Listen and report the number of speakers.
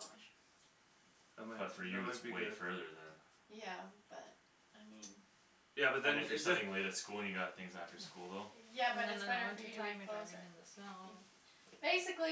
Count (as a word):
four